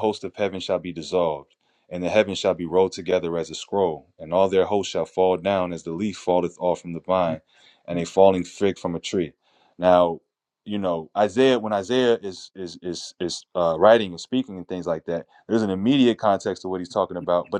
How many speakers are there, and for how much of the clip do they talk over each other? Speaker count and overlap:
one, no overlap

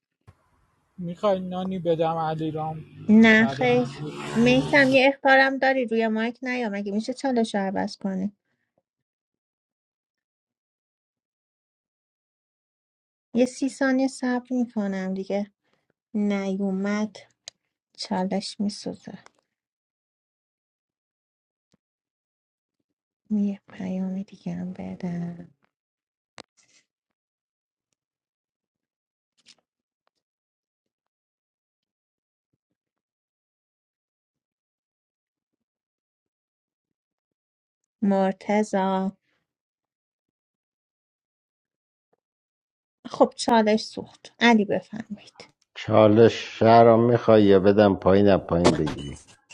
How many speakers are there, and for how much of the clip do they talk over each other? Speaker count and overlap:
three, about 1%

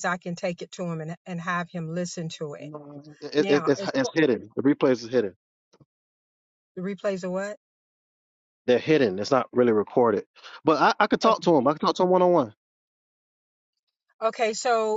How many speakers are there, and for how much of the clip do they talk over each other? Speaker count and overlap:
two, about 6%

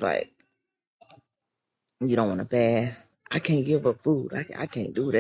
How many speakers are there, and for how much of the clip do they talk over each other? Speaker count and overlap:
one, no overlap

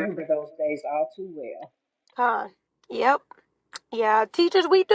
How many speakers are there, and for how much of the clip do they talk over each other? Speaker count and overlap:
two, no overlap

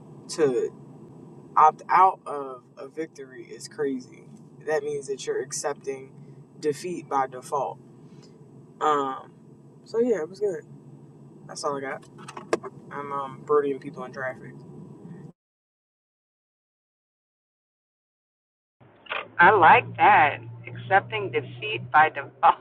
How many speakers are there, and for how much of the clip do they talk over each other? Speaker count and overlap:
two, no overlap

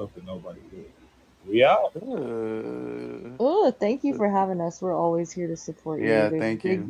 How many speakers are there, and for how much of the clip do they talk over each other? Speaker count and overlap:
three, about 13%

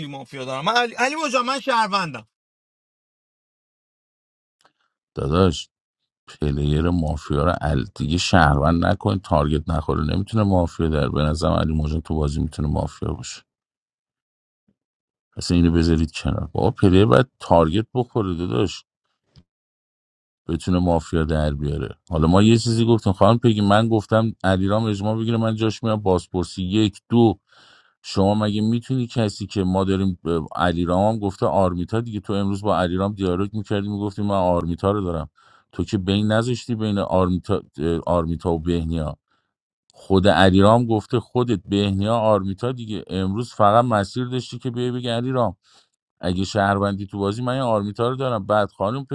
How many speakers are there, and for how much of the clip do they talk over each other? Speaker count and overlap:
two, no overlap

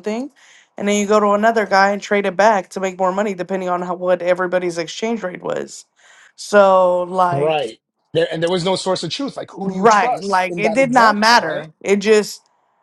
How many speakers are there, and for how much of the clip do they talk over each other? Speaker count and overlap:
two, about 18%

